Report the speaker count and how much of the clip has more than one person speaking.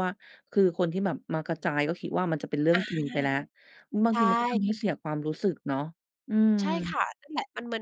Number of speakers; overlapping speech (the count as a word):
two, about 3%